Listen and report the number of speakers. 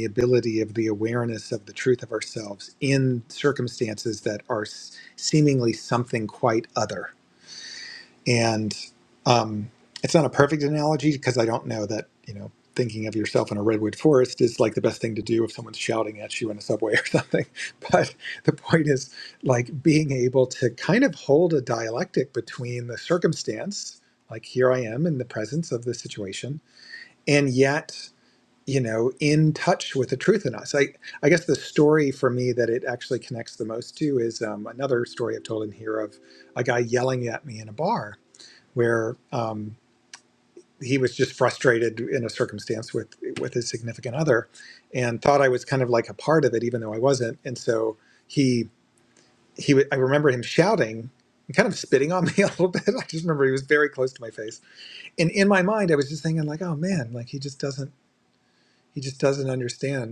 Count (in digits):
1